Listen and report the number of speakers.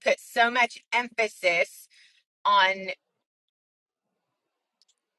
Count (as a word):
one